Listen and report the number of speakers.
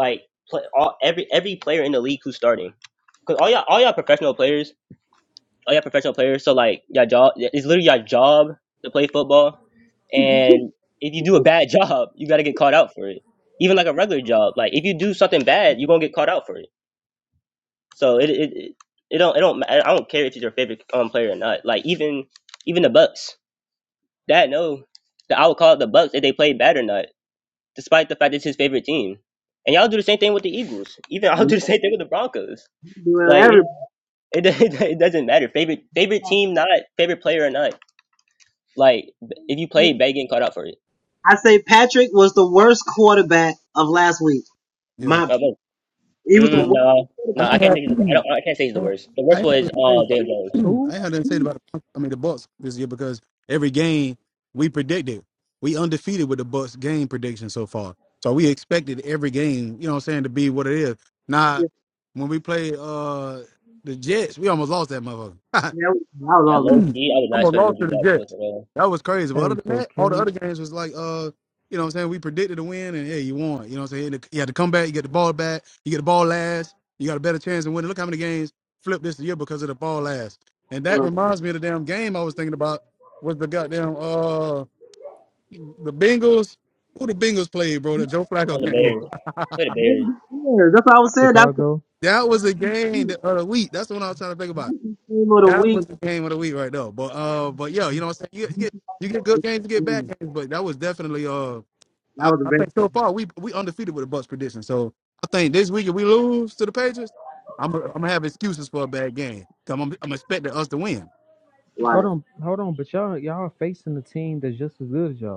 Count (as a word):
four